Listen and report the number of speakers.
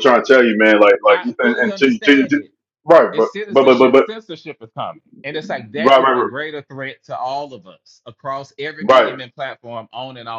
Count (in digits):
2